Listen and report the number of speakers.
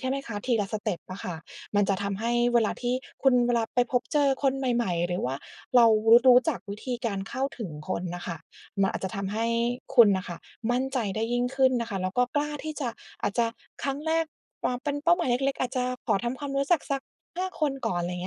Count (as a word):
one